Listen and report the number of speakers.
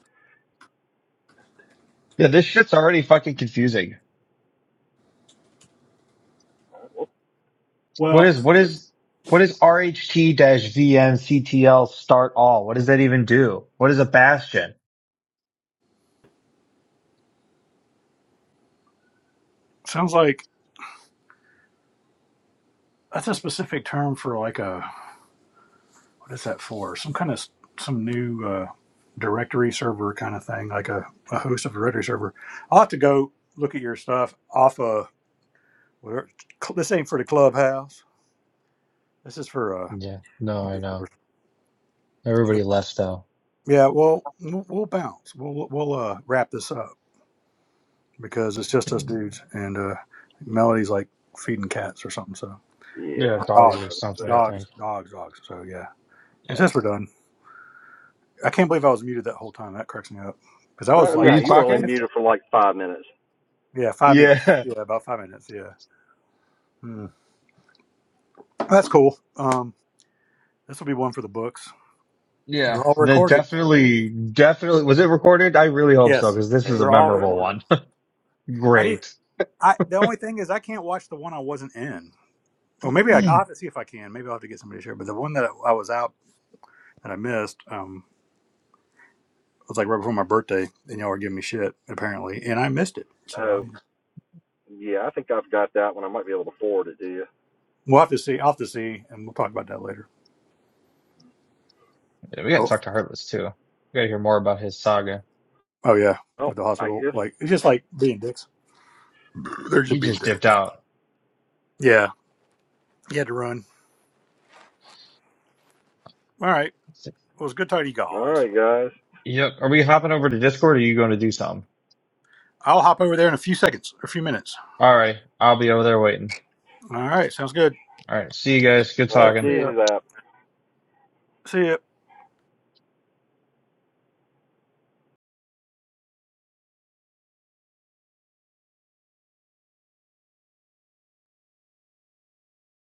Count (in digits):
3